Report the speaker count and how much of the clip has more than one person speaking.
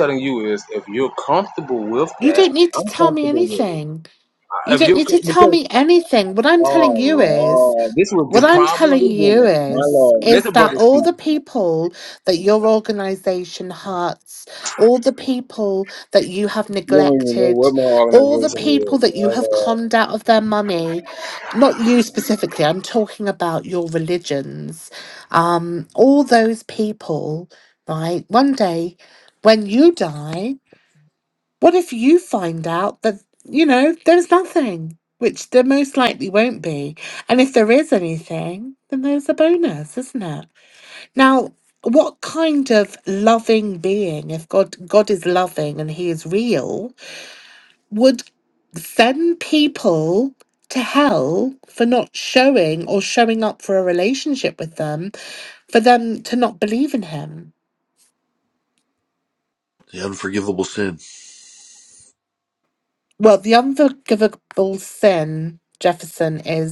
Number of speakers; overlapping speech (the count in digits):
3, about 12%